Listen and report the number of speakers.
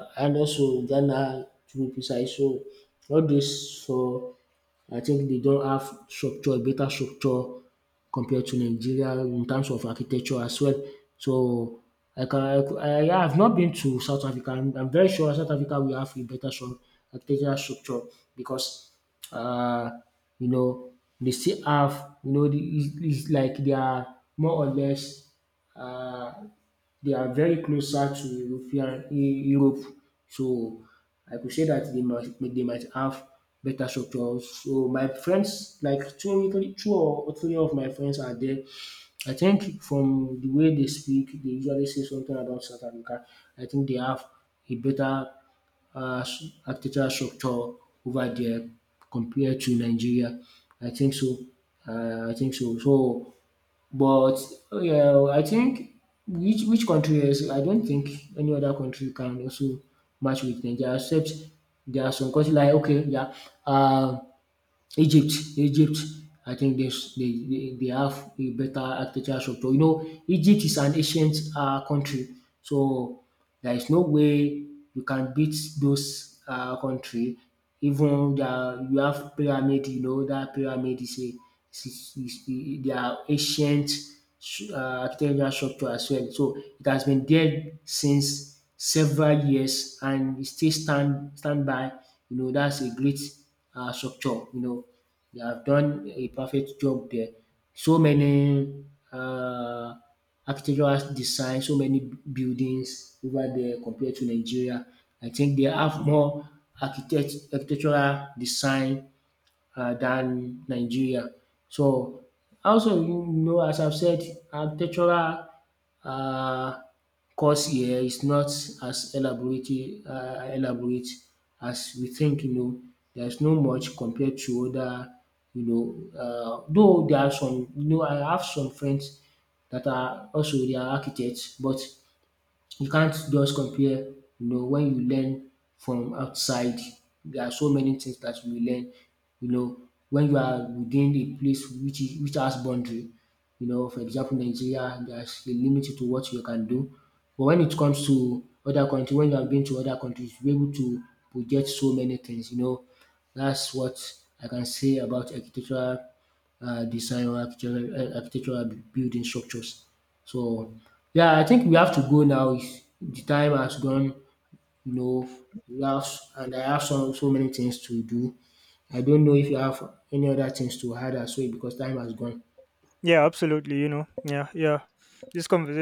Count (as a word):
two